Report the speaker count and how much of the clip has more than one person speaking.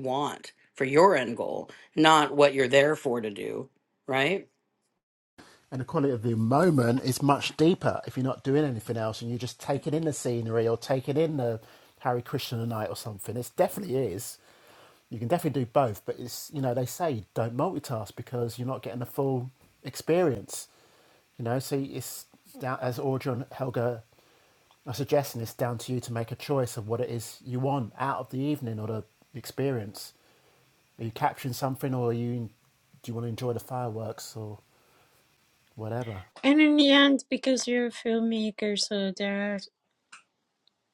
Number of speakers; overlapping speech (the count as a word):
three, no overlap